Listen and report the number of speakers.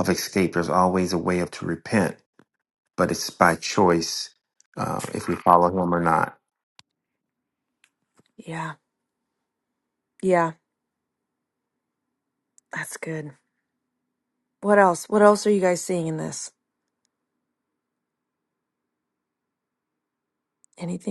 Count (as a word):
two